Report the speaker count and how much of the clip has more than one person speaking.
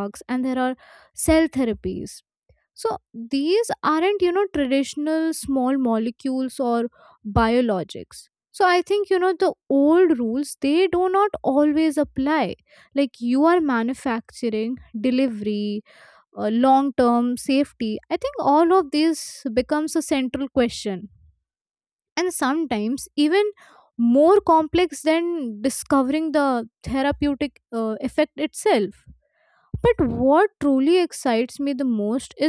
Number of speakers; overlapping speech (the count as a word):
one, no overlap